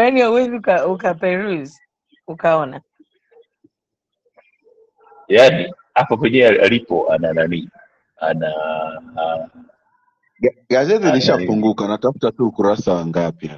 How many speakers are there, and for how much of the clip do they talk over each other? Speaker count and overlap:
3, about 5%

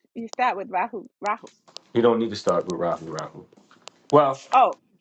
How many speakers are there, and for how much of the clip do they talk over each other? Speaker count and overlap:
2, no overlap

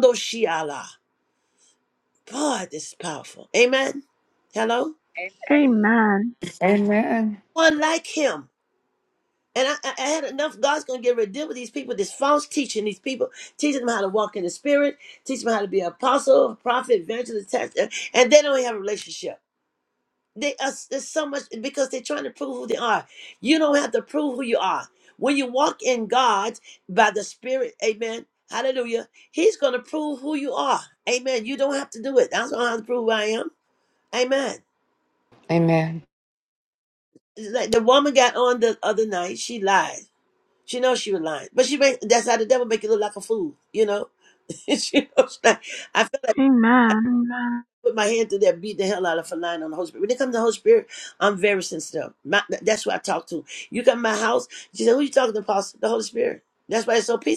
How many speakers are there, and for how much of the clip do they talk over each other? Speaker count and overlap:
3, no overlap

